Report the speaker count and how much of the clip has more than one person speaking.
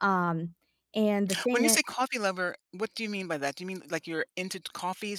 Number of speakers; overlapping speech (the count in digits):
2, about 7%